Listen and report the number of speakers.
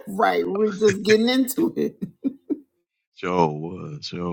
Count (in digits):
2